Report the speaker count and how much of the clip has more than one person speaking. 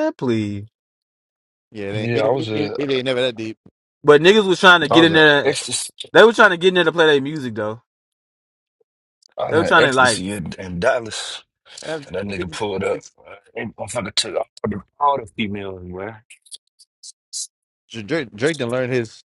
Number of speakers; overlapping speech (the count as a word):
three, about 11%